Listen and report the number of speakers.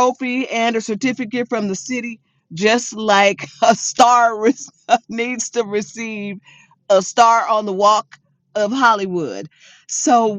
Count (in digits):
1